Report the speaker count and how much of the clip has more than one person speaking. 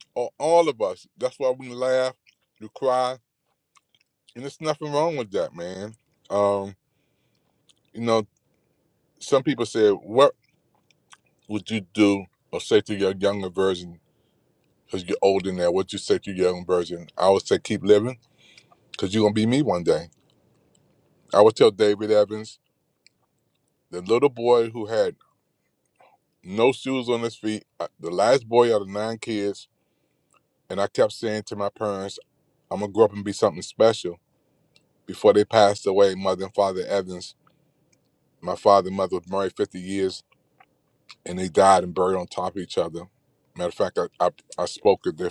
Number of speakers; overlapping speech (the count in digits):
1, no overlap